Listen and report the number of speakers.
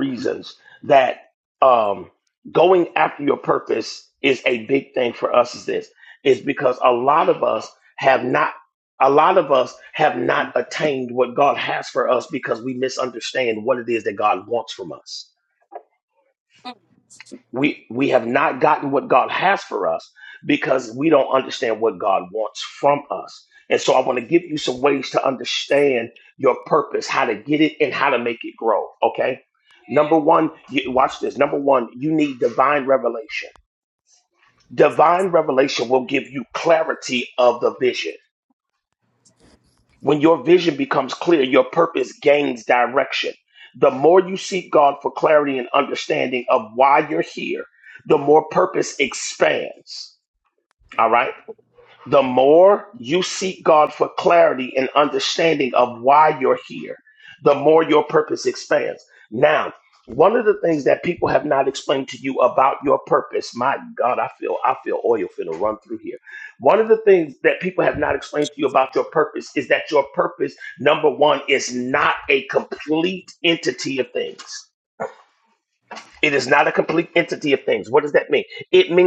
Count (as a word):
one